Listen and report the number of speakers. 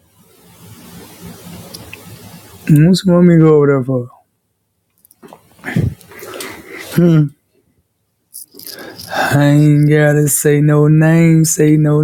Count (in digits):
1